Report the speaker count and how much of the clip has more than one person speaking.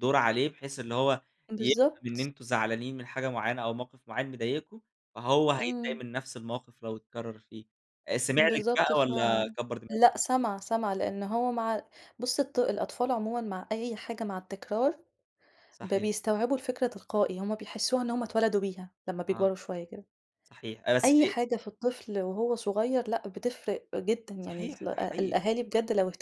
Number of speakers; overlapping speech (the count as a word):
two, about 12%